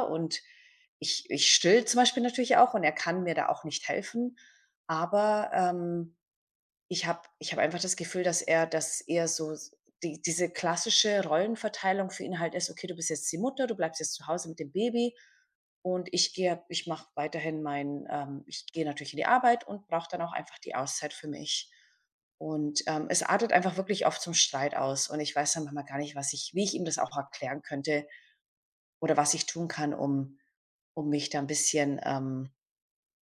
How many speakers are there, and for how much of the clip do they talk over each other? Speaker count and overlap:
1, no overlap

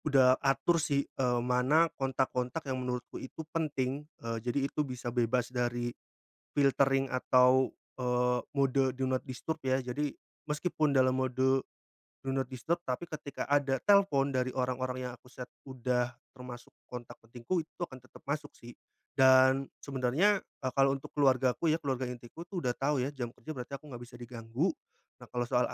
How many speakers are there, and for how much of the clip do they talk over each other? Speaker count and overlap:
1, no overlap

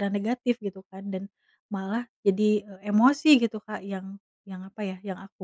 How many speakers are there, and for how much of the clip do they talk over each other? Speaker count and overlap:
1, no overlap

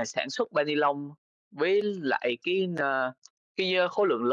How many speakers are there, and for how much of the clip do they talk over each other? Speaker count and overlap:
1, no overlap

